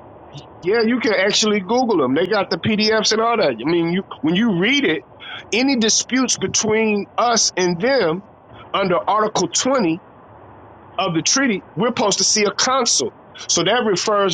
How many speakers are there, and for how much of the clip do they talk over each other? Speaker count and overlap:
one, no overlap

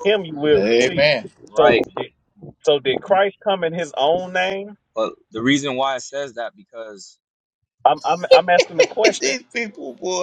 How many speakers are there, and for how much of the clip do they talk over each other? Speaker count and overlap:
three, about 10%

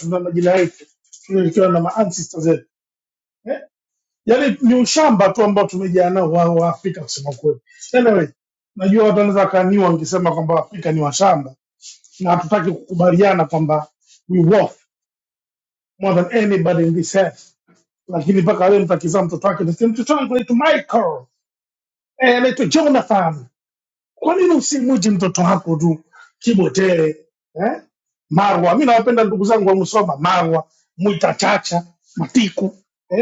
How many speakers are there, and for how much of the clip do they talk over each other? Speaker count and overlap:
one, no overlap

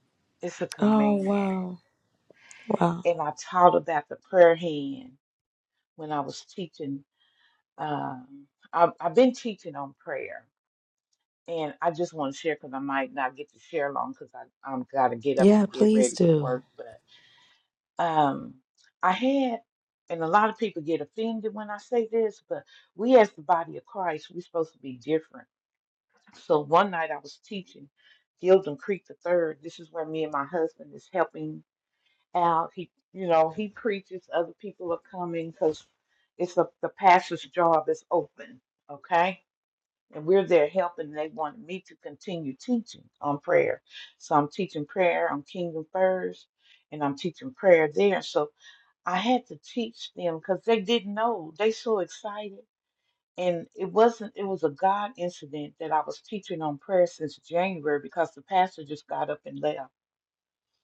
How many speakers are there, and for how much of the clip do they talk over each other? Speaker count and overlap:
two, about 3%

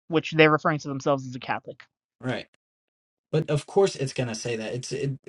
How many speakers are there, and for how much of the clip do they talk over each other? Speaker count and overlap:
two, no overlap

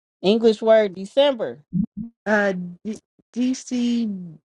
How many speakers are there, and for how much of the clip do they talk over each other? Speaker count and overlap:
two, no overlap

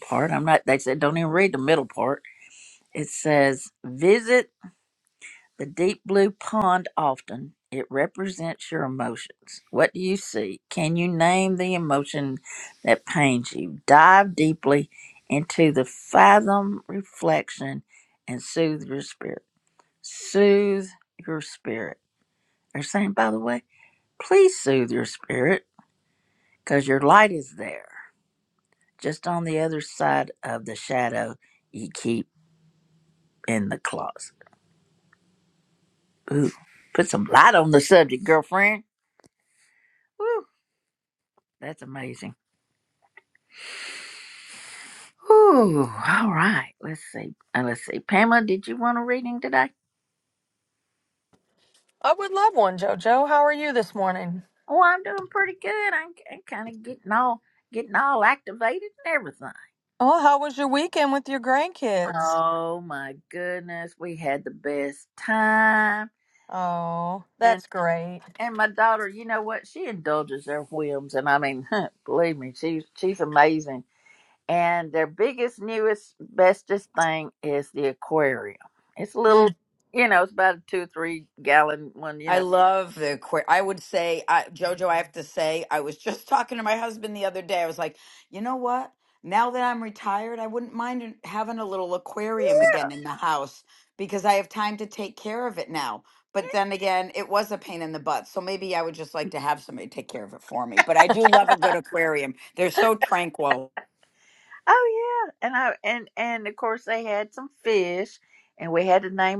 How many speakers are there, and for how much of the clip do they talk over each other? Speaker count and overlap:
three, about 1%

